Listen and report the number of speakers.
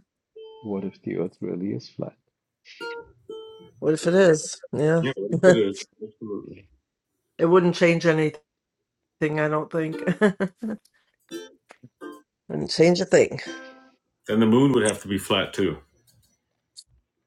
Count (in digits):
3